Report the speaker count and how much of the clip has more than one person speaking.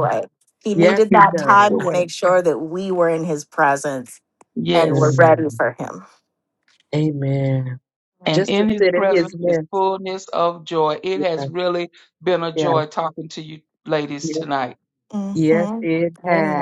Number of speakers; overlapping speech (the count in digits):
3, about 30%